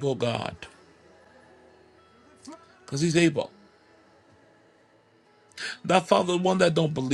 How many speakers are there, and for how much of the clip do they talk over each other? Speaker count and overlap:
1, no overlap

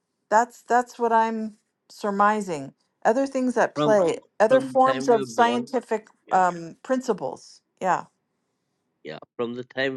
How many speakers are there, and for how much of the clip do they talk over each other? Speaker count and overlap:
2, about 15%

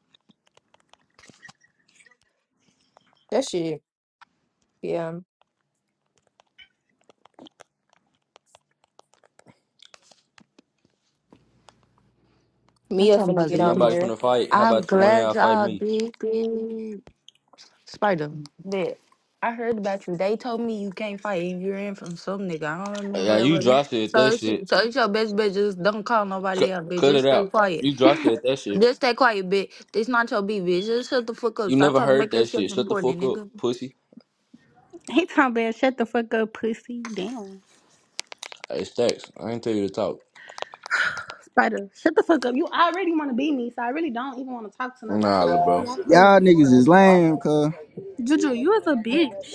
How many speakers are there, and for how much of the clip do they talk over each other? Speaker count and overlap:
5, about 14%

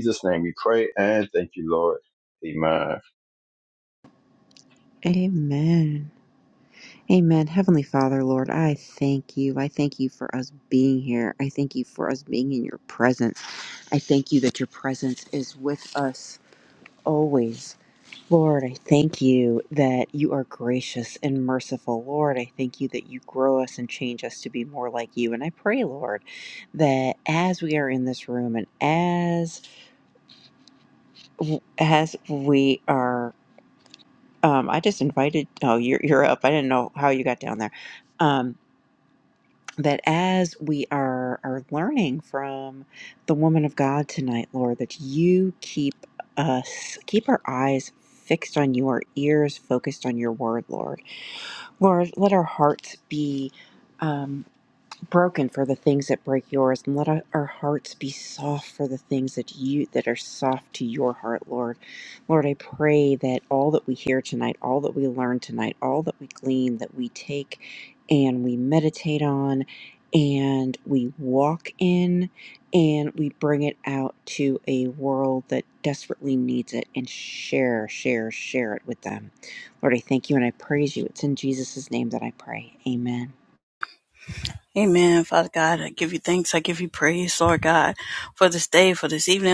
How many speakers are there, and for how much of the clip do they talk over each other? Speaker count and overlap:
3, no overlap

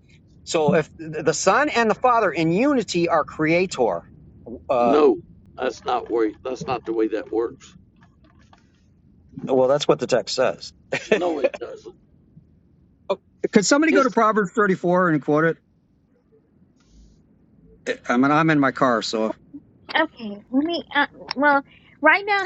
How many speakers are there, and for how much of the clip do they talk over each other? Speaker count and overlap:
3, about 2%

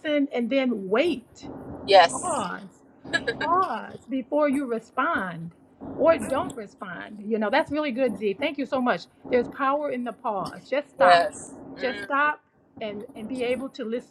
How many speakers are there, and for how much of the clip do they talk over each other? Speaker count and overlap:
2, about 7%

